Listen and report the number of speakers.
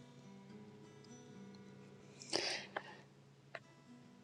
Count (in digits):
0